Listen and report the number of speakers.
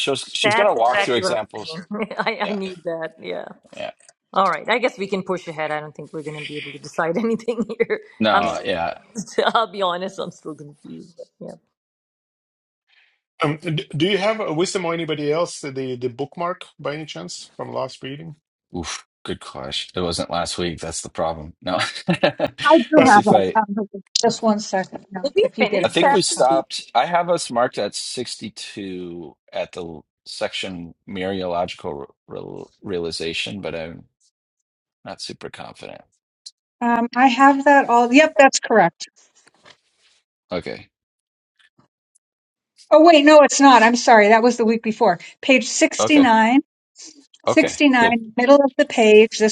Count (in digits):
4